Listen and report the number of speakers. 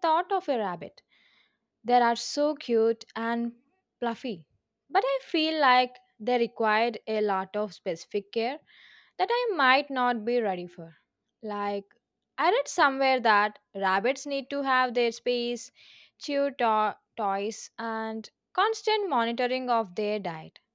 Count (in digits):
1